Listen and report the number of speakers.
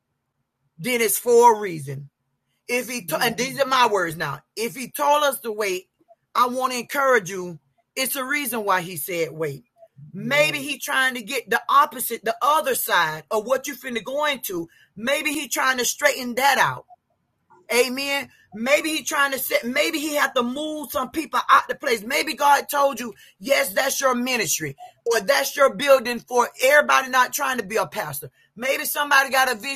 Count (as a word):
one